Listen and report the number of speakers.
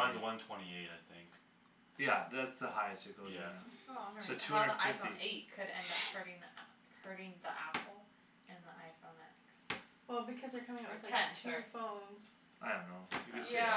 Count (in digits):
4